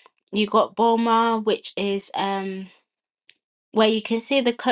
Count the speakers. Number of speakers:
1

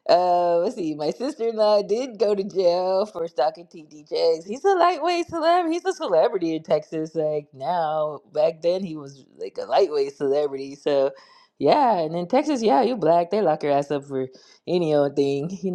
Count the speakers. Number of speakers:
1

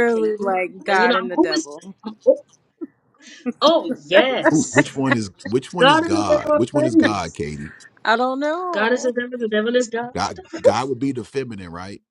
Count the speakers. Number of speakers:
3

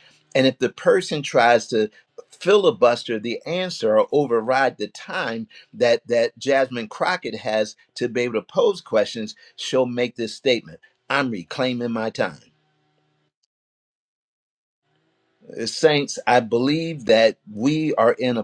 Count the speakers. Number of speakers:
1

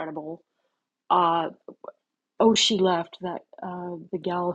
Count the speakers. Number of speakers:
1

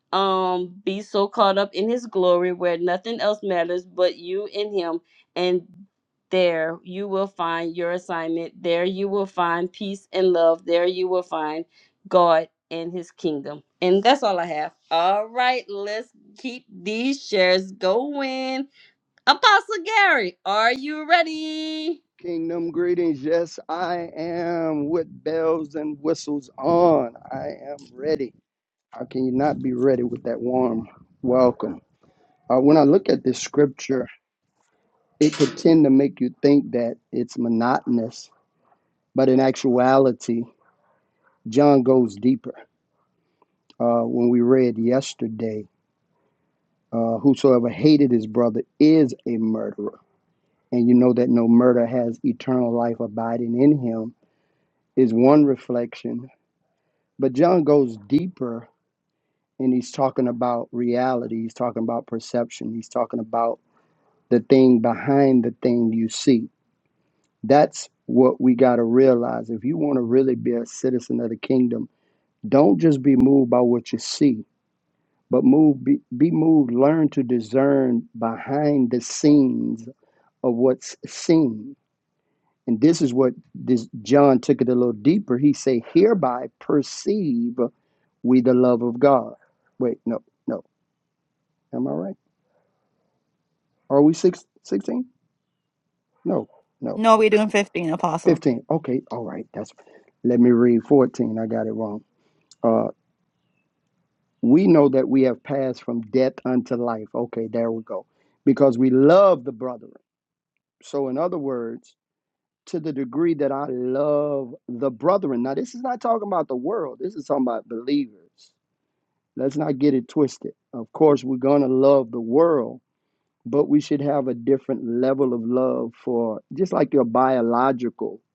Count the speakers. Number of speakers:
3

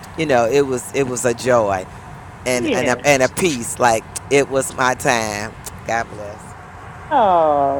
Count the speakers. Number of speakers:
2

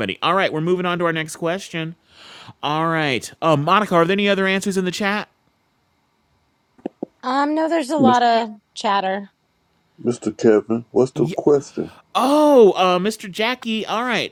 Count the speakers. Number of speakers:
3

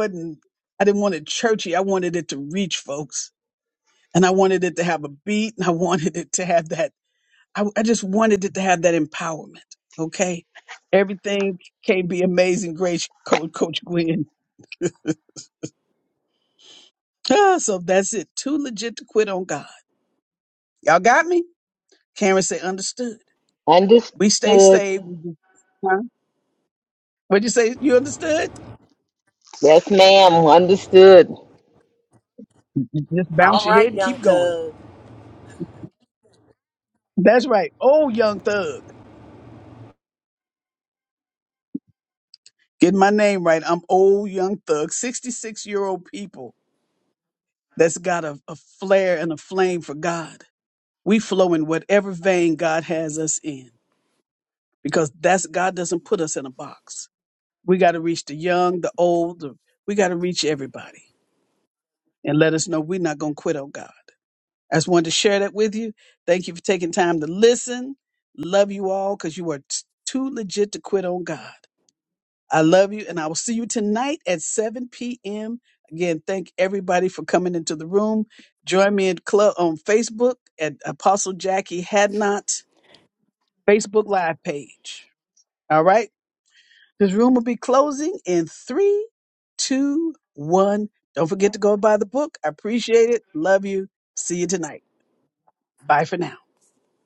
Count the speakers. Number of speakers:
2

